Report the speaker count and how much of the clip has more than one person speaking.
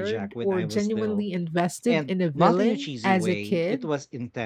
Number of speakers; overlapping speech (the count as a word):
two, about 73%